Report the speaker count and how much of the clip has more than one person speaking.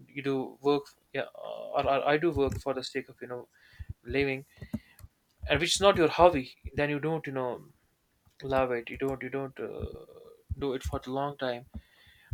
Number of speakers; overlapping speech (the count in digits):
1, no overlap